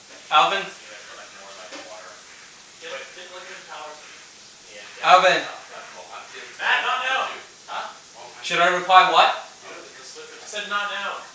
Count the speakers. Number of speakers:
4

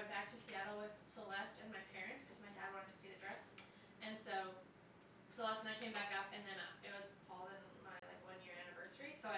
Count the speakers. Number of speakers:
1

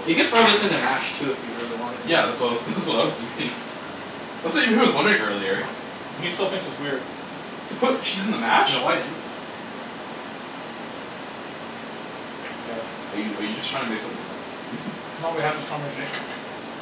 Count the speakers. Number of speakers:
3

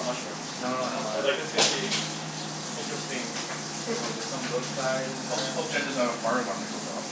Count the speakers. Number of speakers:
3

